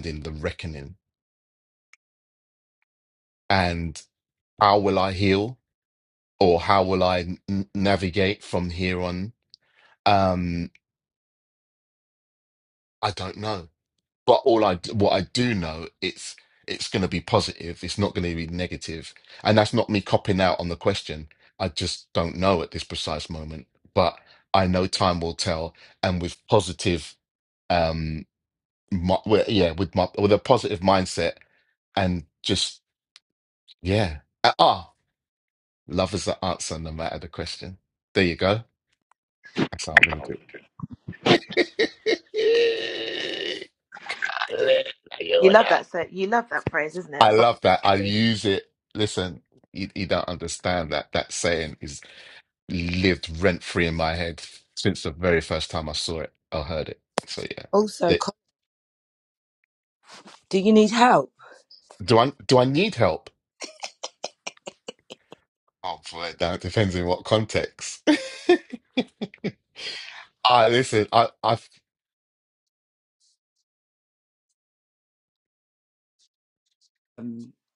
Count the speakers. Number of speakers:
3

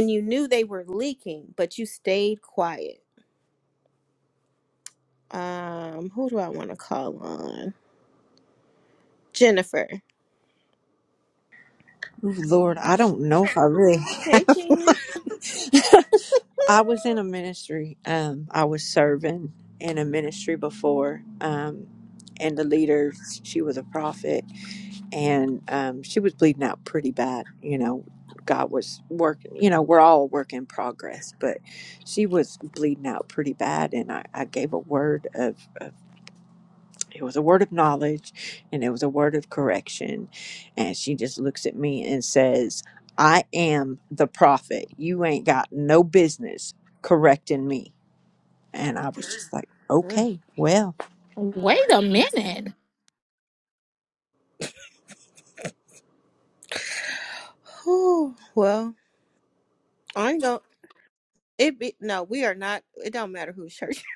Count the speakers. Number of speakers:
3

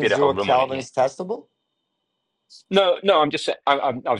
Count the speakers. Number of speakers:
2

